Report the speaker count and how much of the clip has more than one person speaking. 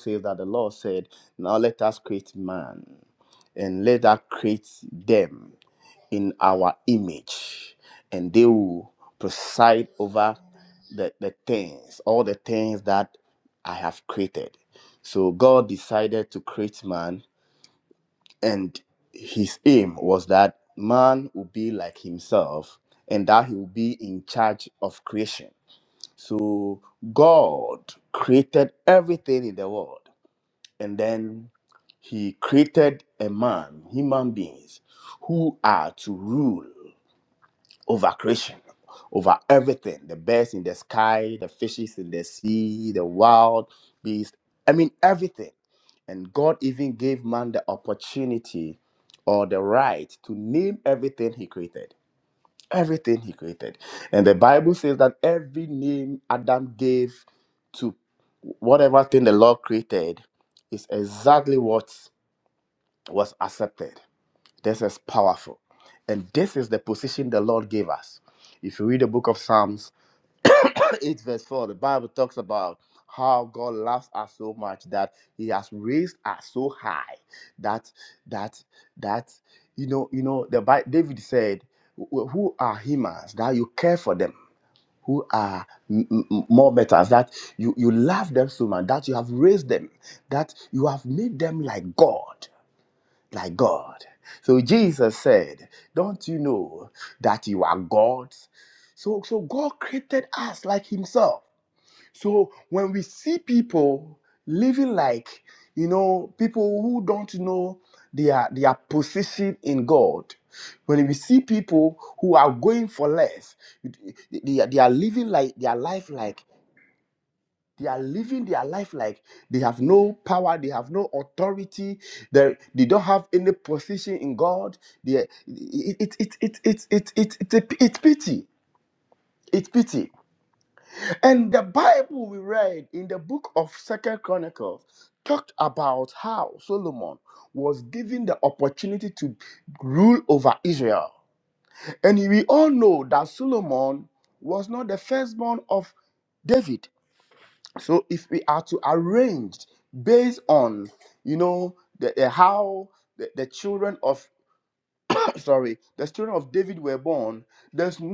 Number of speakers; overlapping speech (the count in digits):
1, no overlap